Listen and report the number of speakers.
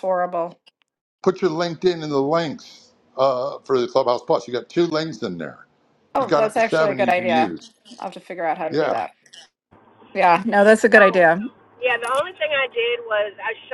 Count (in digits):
3